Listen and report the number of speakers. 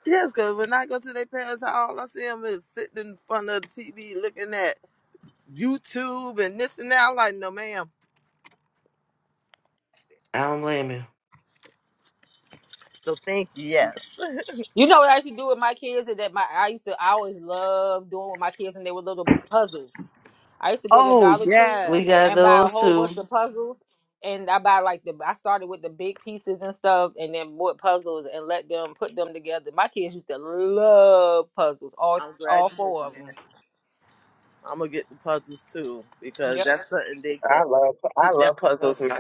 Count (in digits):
4